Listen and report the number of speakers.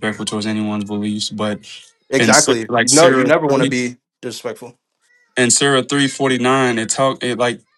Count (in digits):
2